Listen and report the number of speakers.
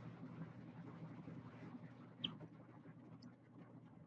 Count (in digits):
0